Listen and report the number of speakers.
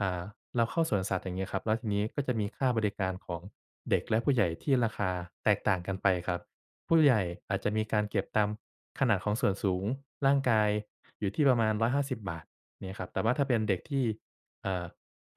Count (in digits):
1